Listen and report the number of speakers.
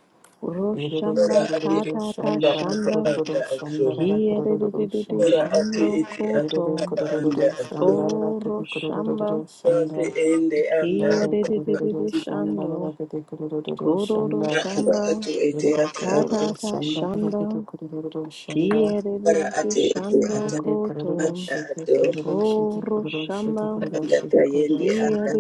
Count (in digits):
3